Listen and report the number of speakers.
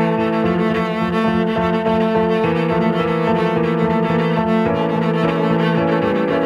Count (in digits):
0